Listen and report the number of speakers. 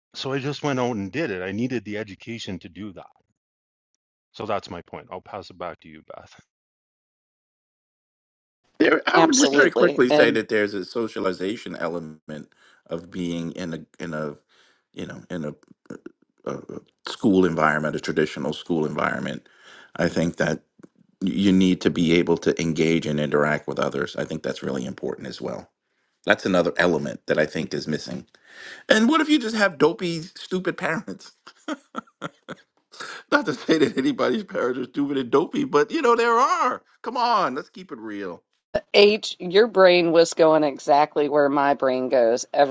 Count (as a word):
three